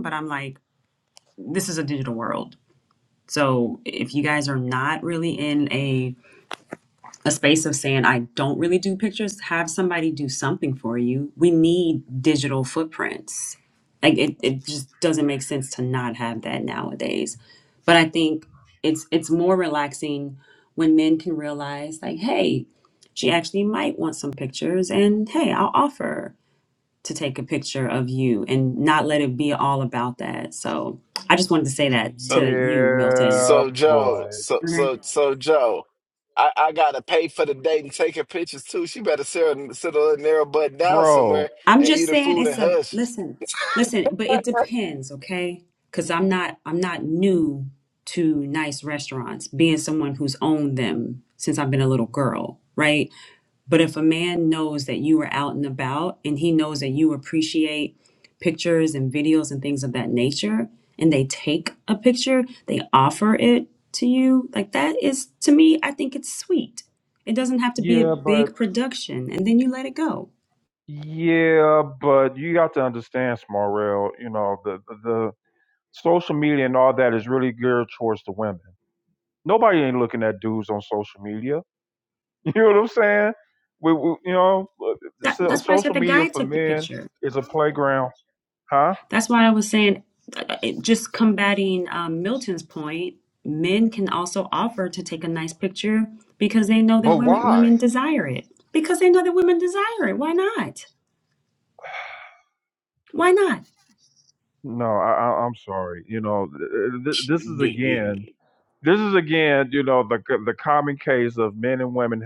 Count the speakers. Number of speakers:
3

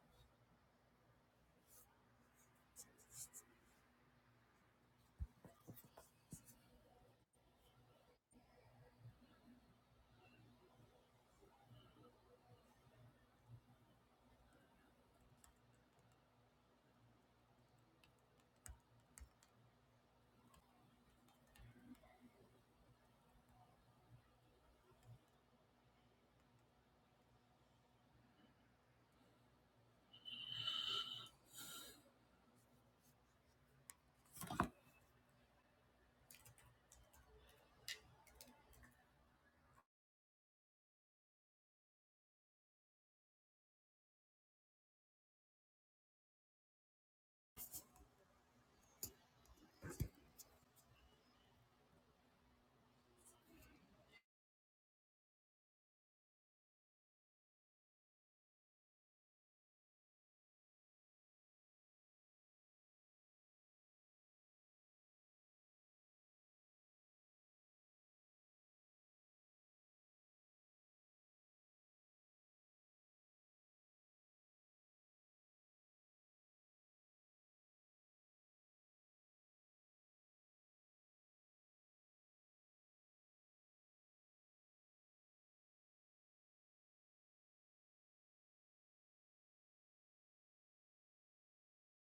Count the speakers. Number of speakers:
0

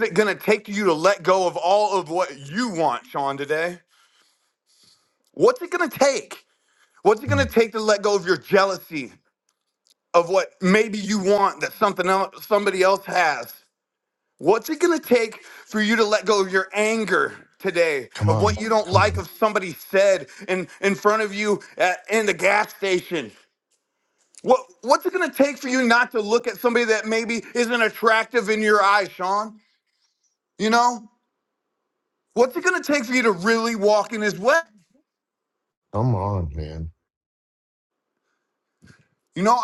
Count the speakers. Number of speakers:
2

